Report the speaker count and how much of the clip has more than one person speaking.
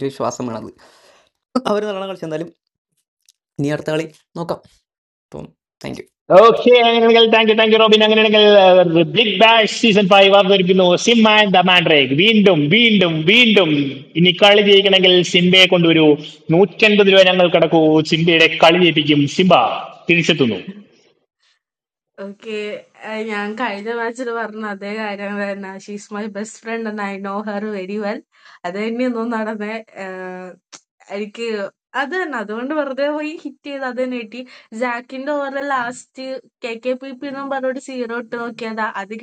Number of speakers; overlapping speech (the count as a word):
three, no overlap